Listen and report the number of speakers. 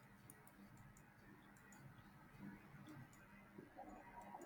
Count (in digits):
0